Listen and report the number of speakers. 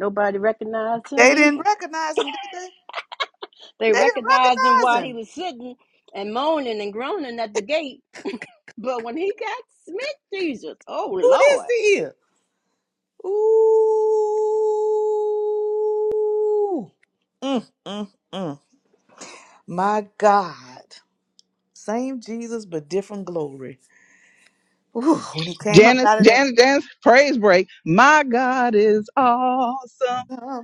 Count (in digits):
3